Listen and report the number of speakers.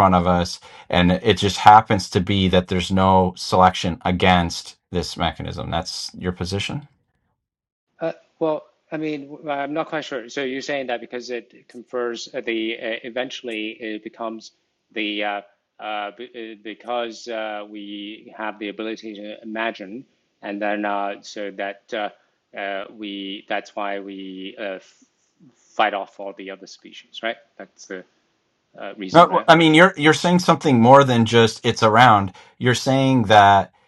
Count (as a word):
two